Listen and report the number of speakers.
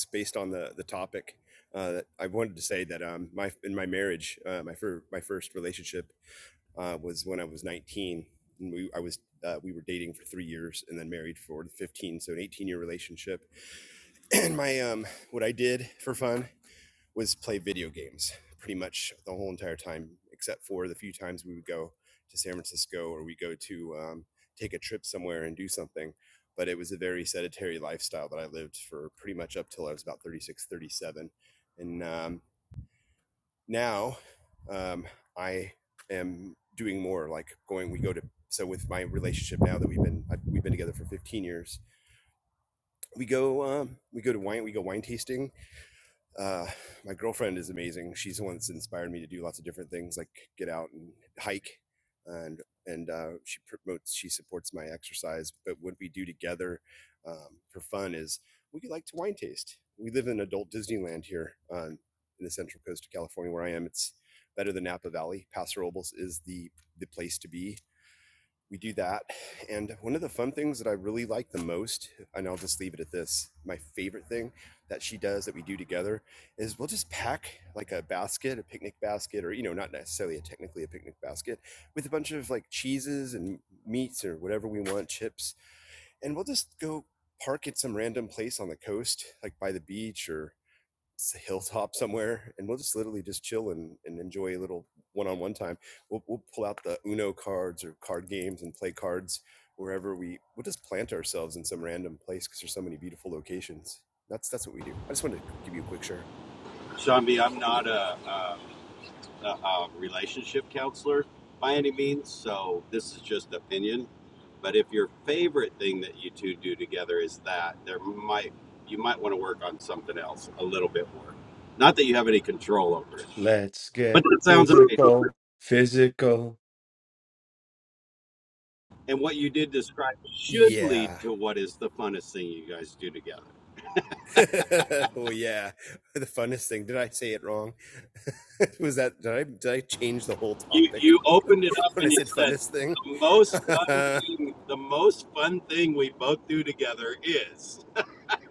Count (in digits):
3